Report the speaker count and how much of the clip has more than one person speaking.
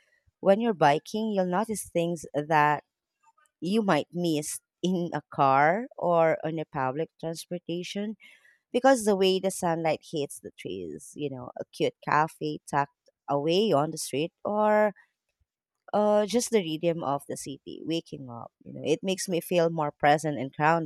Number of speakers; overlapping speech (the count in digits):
1, no overlap